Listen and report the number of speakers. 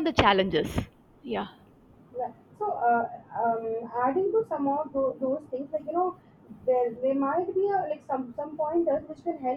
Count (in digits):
2